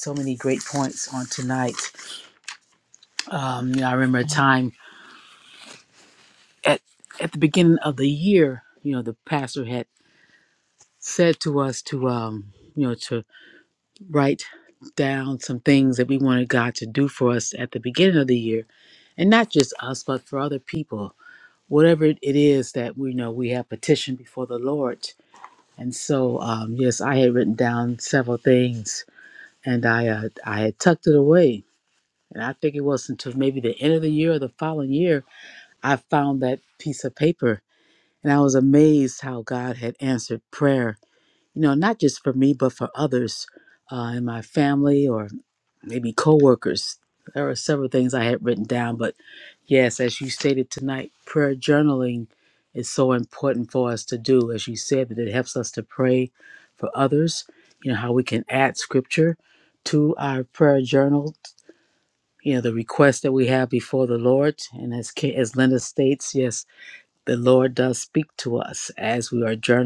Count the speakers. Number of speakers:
1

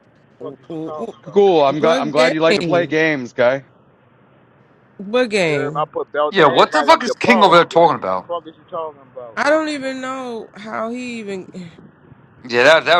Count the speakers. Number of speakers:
4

